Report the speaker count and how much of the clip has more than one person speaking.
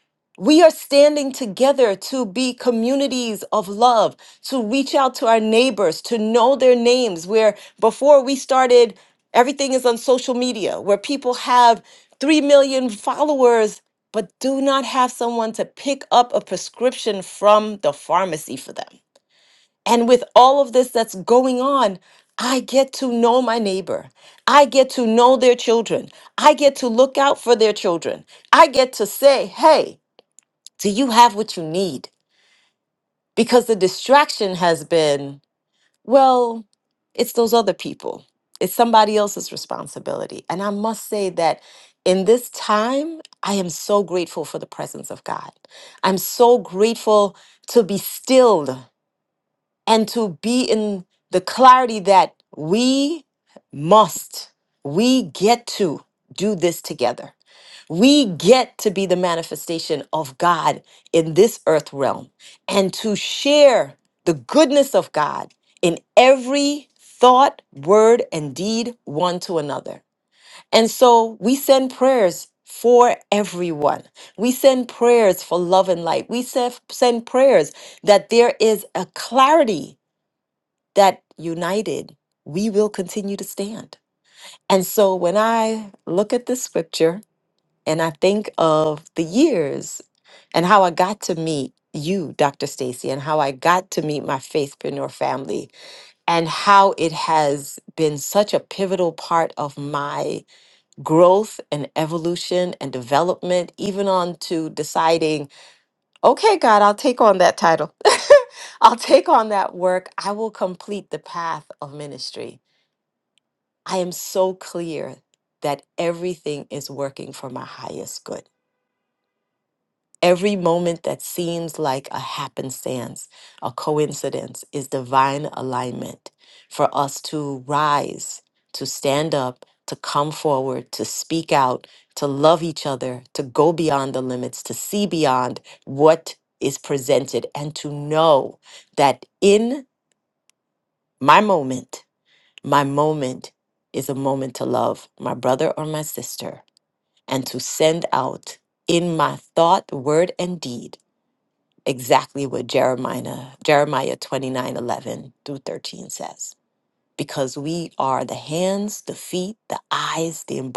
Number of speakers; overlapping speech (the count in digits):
1, no overlap